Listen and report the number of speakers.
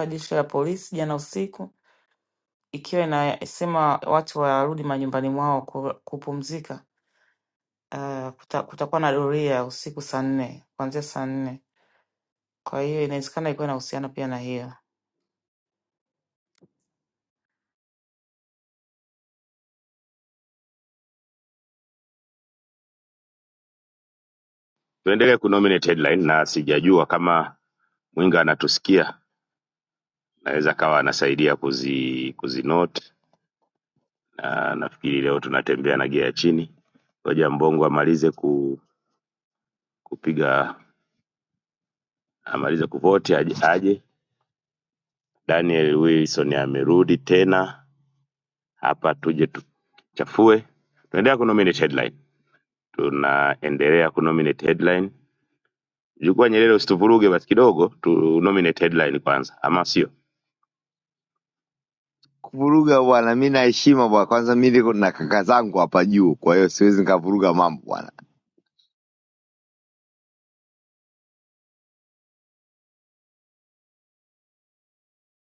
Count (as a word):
three